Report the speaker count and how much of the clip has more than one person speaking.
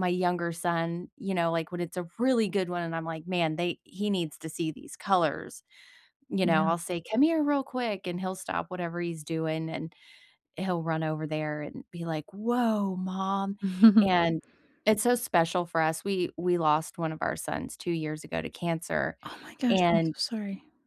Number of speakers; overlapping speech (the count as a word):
two, about 4%